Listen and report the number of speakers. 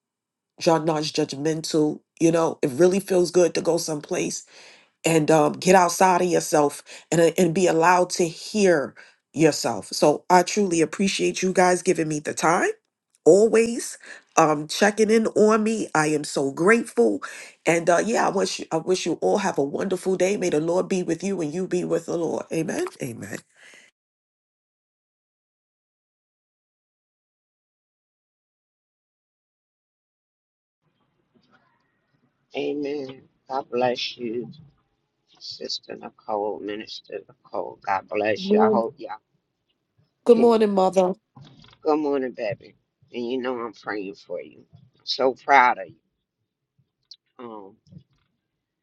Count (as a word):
two